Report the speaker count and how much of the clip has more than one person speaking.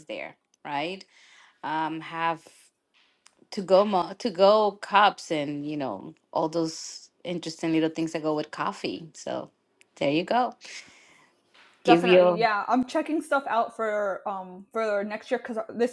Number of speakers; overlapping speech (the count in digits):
2, about 4%